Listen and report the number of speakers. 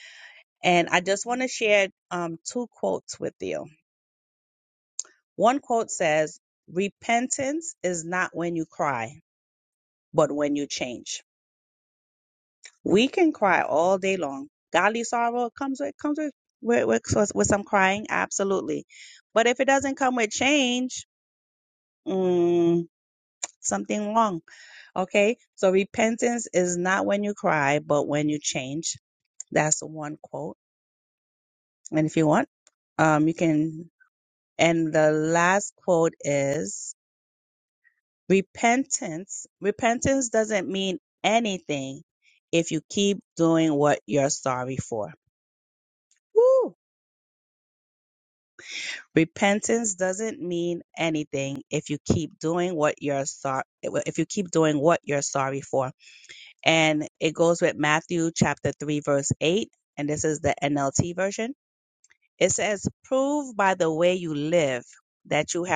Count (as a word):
one